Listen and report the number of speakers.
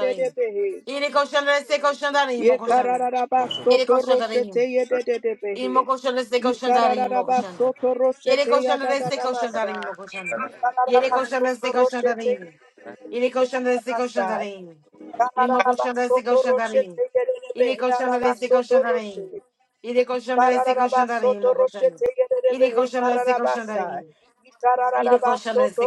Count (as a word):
two